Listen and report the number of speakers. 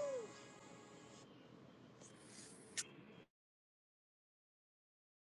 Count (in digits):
0